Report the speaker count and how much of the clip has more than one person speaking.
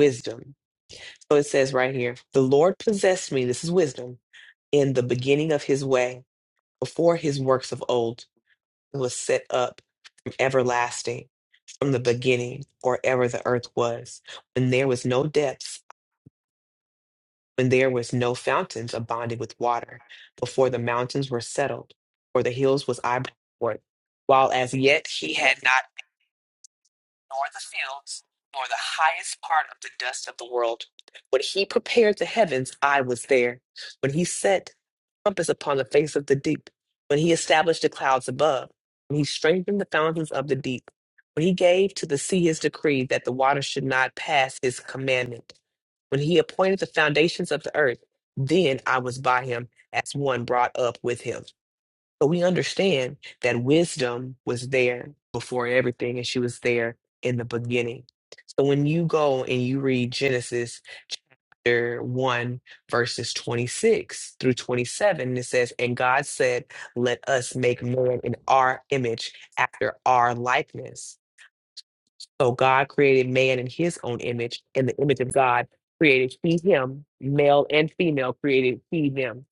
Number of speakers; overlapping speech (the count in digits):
1, no overlap